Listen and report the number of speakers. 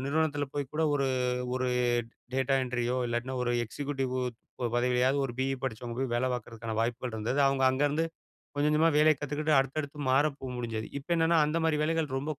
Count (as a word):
one